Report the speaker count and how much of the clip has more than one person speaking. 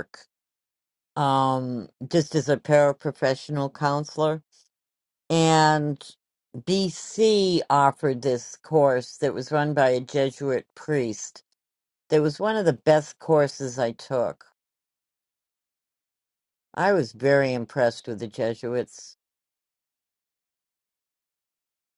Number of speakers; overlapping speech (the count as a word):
one, no overlap